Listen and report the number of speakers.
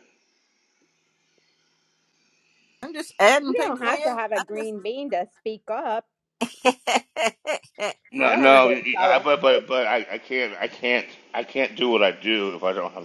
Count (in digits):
3